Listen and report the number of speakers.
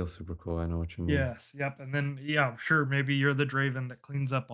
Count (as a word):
two